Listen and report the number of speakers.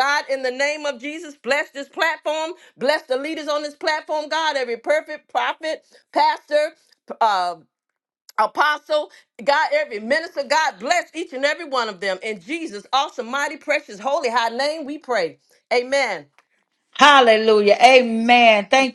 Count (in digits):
2